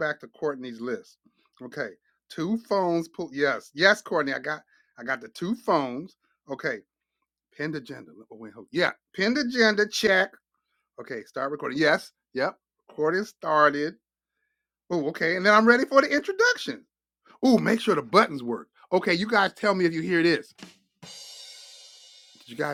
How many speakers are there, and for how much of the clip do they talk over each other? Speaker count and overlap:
1, no overlap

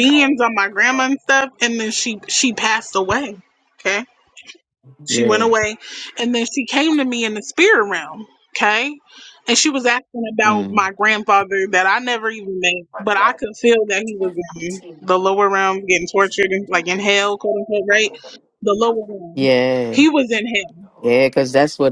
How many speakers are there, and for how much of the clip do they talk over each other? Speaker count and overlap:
2, about 4%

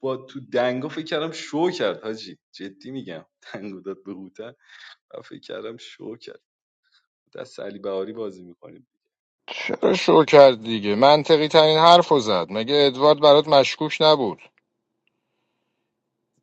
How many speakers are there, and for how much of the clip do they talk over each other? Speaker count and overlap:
2, no overlap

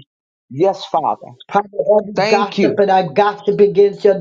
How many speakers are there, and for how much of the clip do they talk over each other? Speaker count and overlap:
2, about 14%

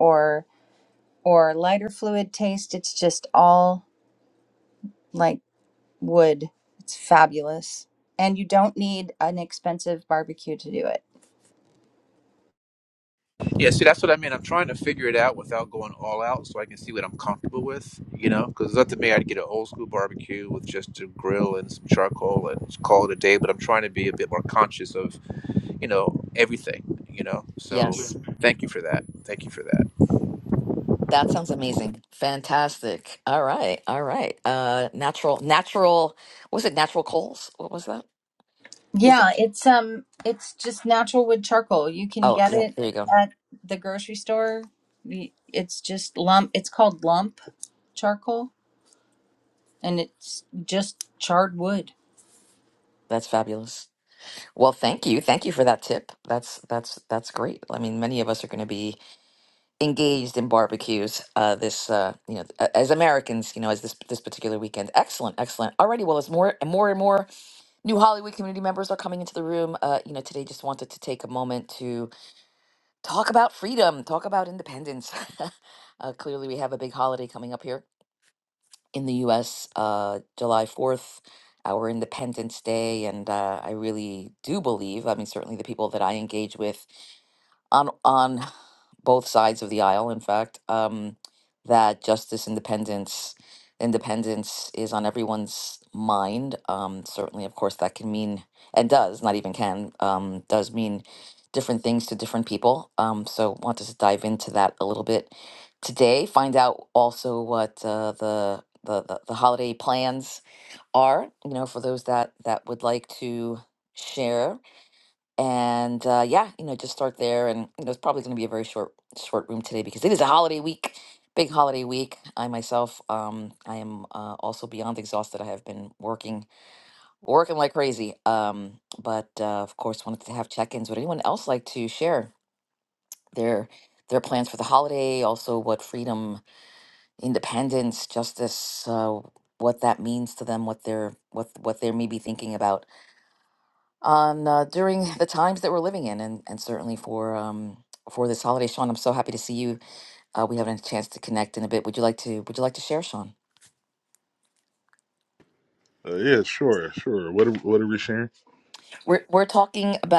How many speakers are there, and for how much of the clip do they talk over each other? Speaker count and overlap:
4, about 1%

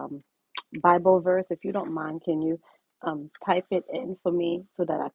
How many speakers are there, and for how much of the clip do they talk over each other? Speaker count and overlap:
1, no overlap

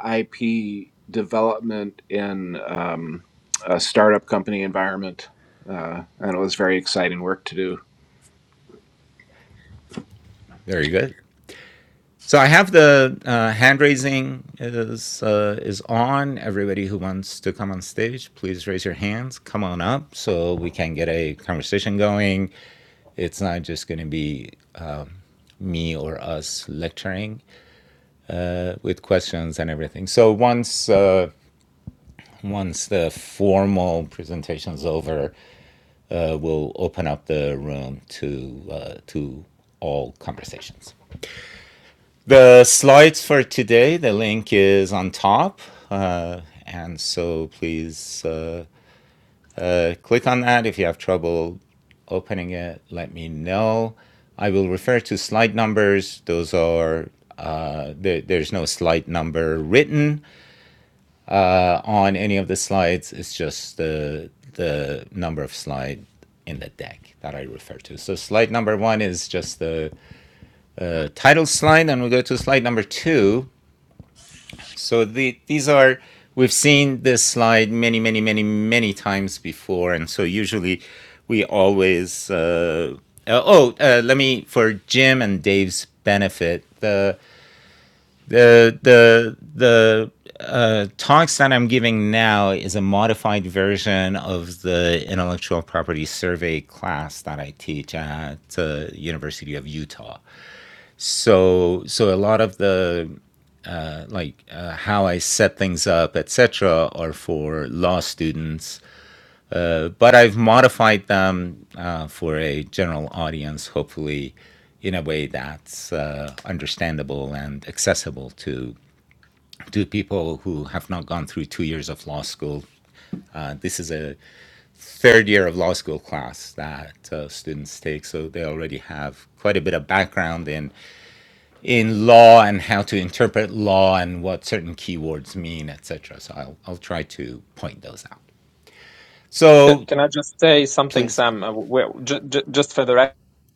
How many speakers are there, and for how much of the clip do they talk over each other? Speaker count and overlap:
3, under 1%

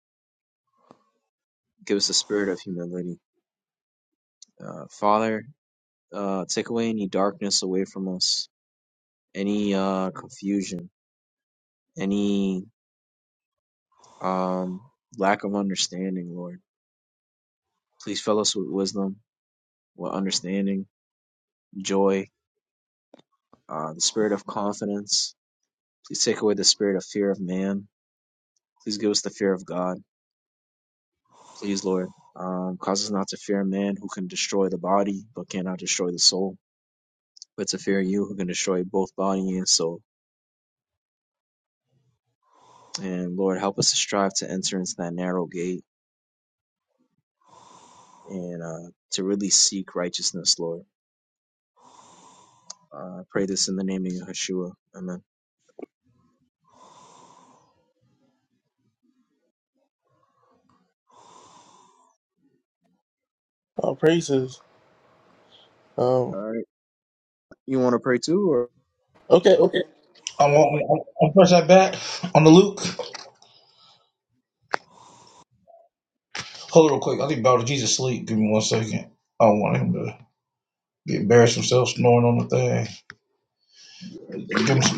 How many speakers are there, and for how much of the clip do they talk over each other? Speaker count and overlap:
3, under 1%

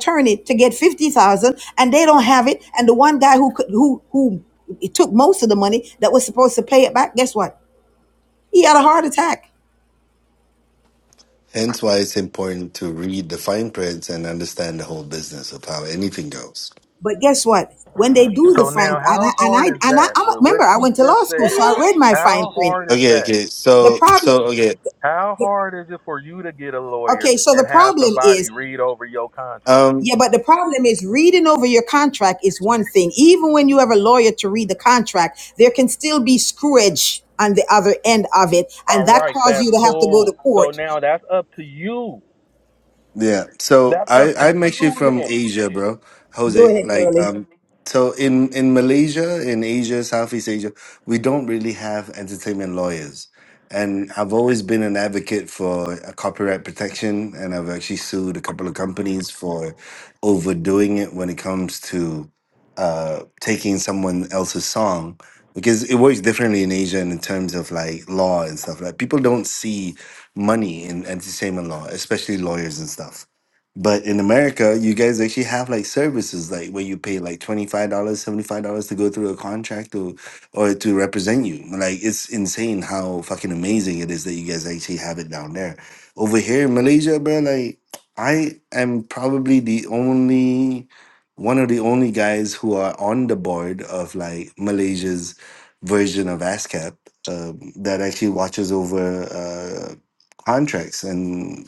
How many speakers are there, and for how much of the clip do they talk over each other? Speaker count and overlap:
3, about 10%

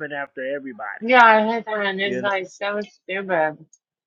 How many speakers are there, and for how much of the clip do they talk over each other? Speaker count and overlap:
2, about 6%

